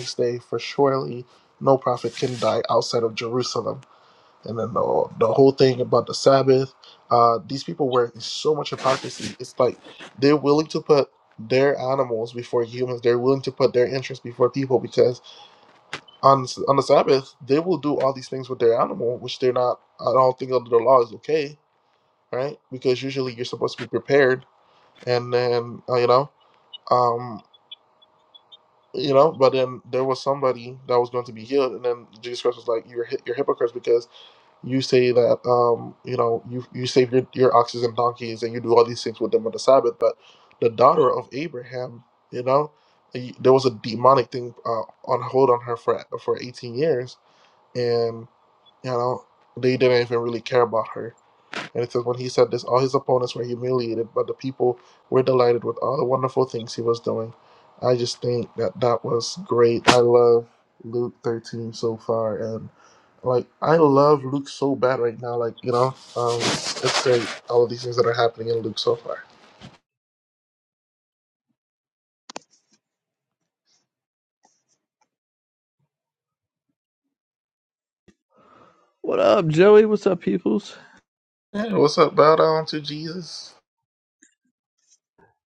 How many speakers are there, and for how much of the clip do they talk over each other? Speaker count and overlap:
2, no overlap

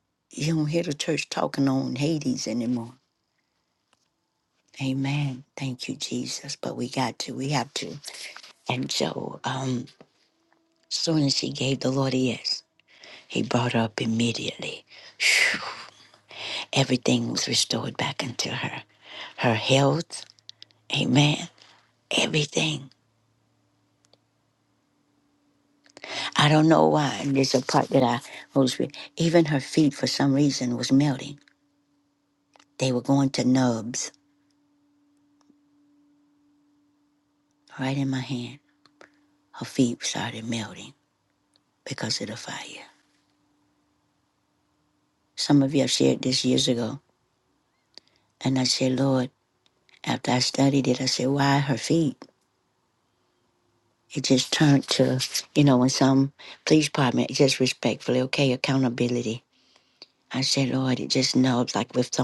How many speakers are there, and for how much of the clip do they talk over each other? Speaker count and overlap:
1, no overlap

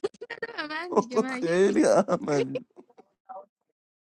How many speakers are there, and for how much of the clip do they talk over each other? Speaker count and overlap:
2, about 7%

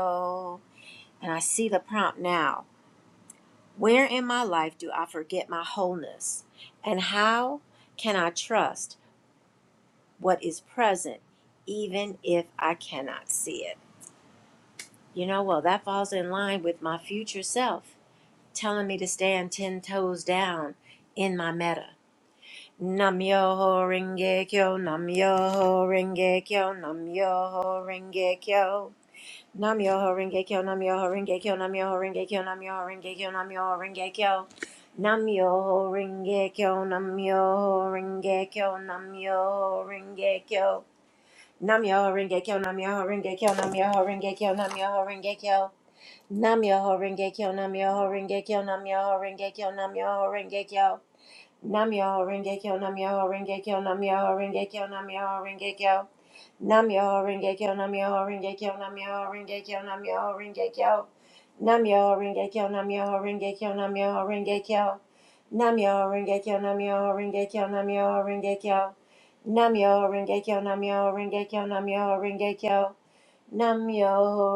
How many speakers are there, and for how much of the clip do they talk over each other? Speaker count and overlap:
1, no overlap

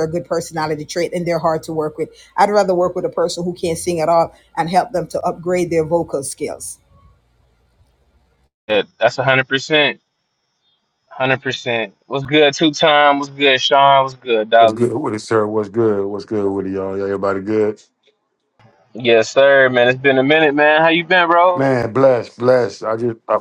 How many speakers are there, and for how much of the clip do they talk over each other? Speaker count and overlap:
3, about 1%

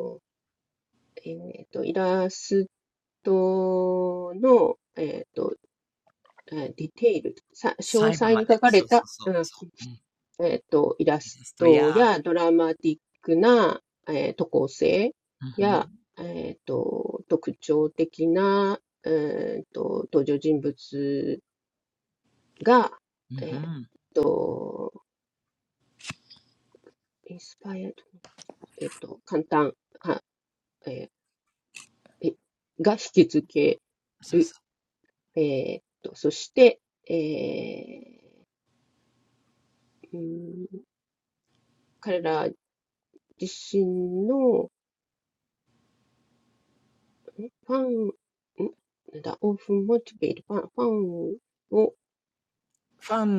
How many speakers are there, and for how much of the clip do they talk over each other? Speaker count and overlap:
2, about 5%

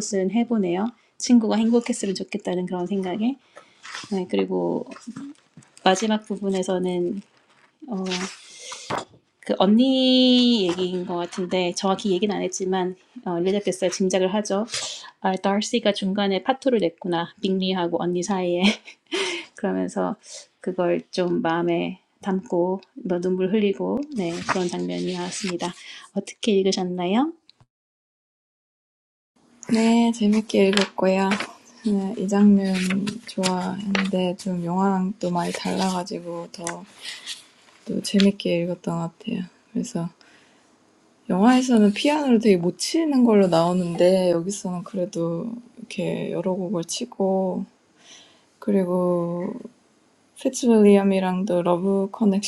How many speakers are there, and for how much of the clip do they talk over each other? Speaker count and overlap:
2, no overlap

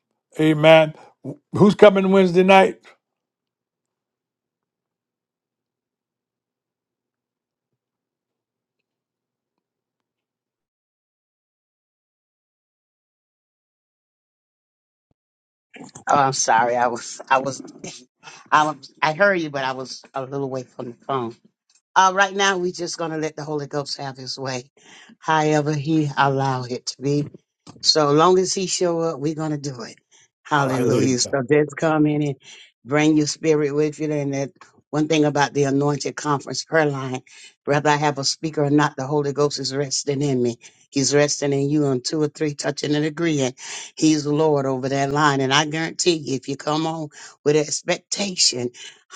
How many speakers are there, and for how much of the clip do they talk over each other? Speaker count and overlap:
2, about 1%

